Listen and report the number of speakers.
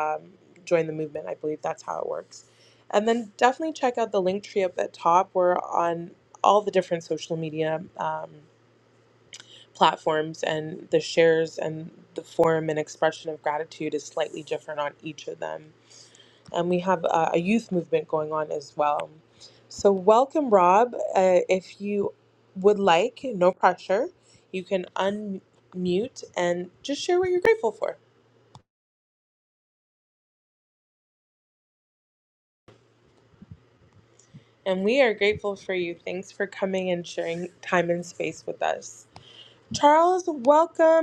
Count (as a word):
one